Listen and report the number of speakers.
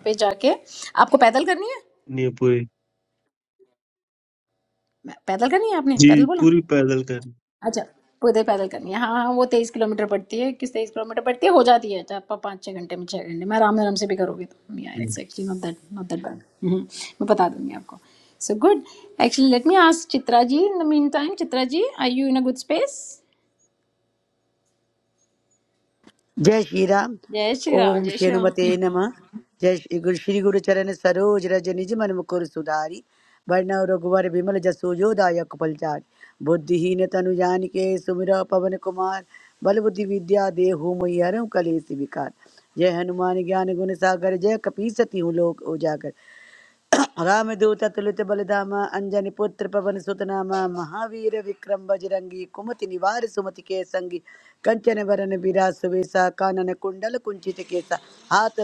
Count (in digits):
3